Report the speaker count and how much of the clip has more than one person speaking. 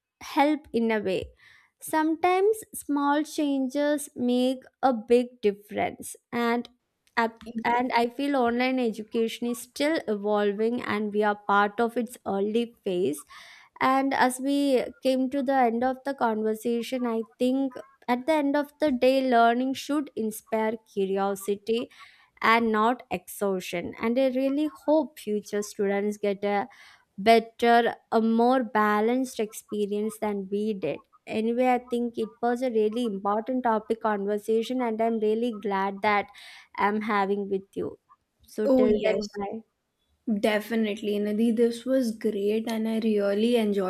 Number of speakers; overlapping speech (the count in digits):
2, about 1%